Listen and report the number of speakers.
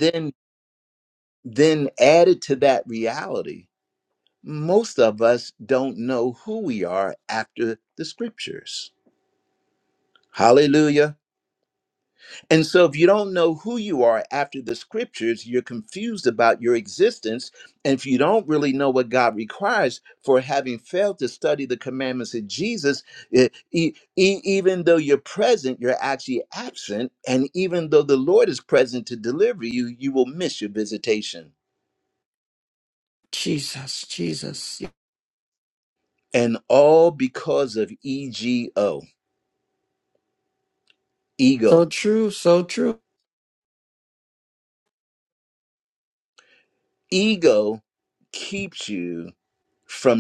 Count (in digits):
2